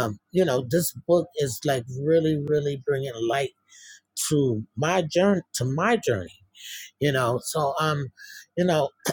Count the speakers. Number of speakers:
1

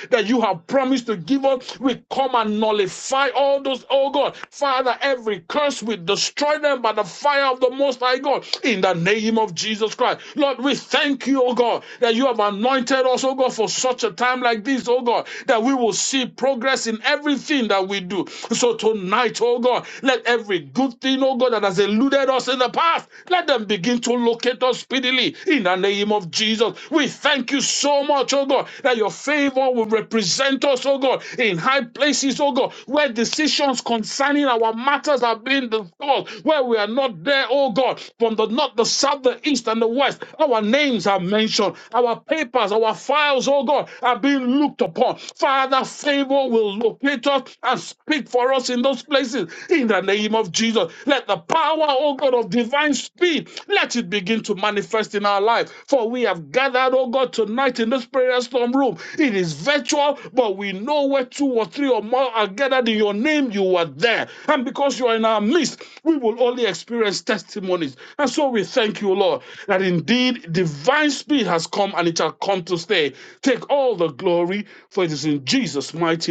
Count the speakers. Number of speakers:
1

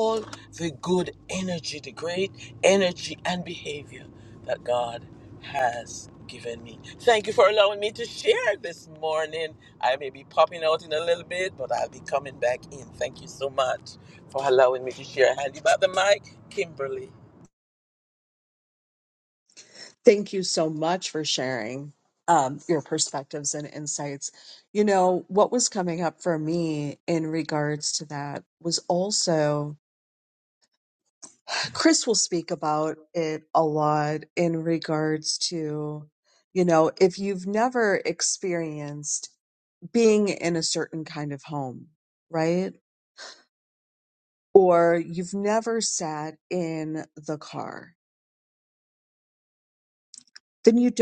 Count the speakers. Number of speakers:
2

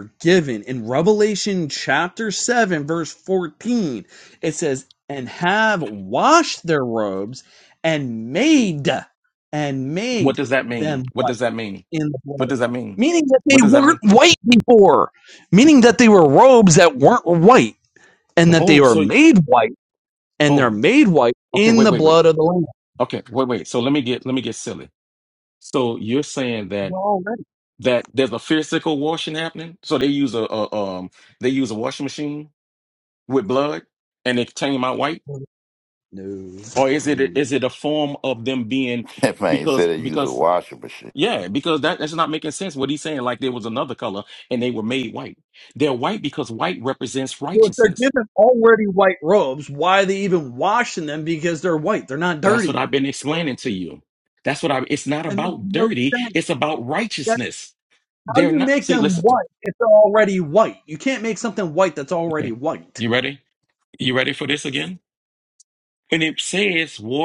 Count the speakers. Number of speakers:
3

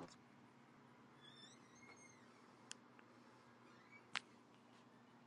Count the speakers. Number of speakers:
0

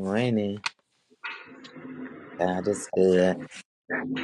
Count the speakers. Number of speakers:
1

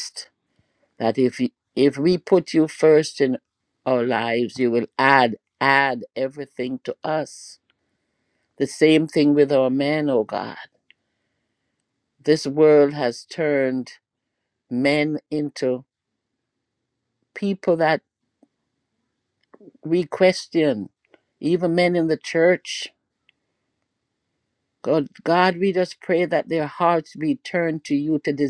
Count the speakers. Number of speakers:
1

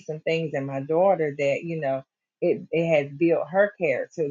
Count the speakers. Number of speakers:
1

